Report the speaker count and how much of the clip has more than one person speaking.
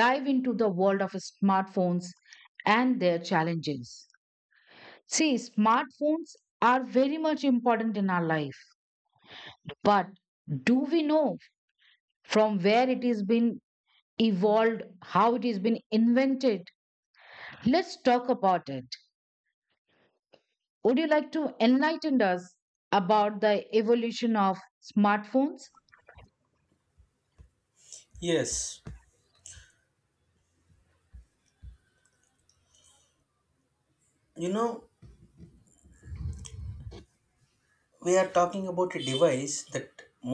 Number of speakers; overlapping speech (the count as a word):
two, no overlap